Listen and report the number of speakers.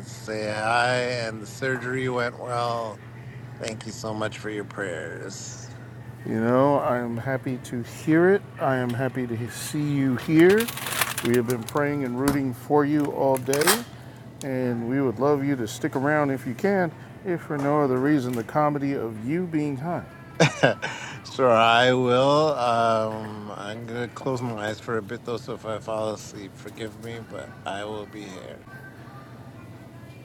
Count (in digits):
2